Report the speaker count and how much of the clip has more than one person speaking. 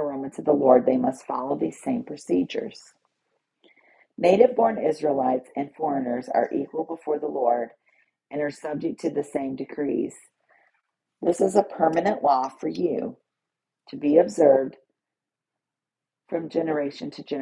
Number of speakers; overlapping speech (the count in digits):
1, no overlap